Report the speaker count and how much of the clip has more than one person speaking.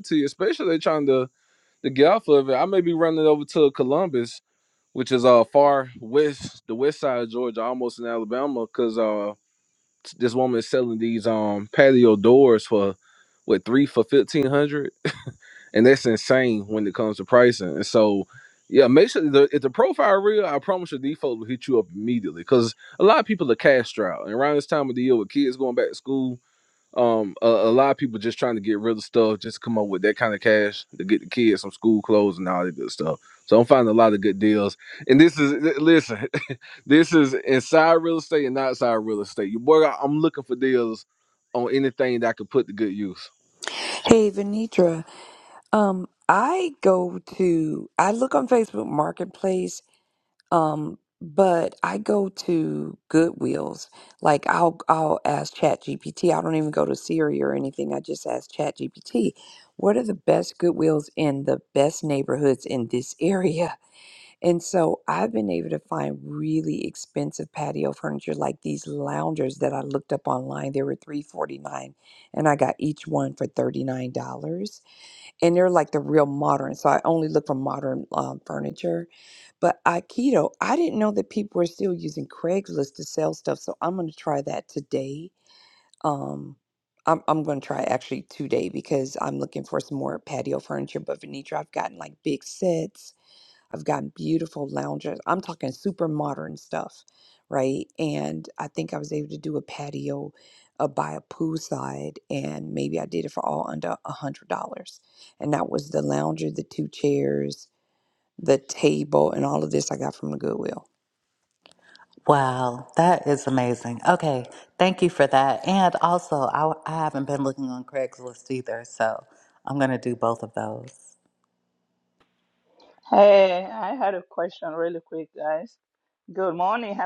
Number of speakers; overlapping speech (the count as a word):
four, no overlap